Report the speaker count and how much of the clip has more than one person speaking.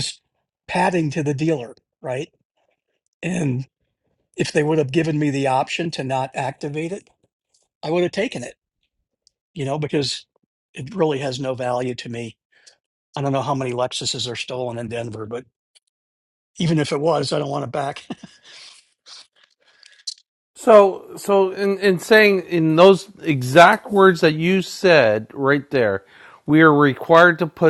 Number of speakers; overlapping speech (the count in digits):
2, no overlap